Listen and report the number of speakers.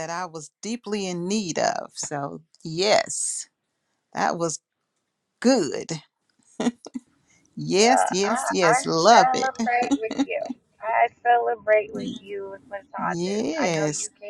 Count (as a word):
two